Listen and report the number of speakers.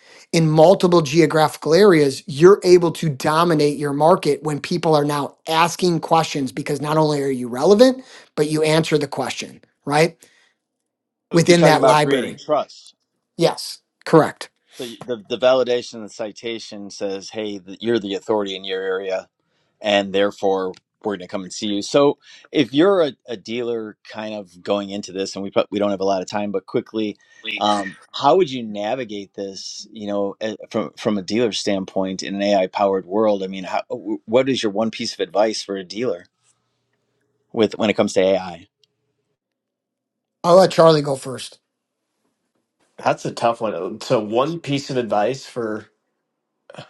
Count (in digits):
3